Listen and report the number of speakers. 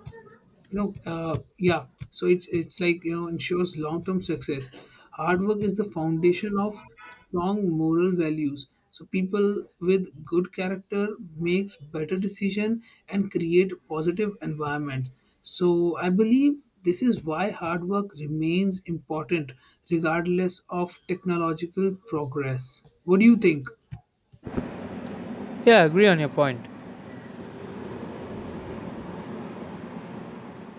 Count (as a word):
two